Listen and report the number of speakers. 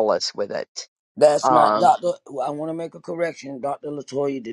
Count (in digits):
2